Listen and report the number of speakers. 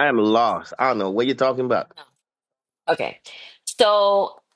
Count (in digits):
2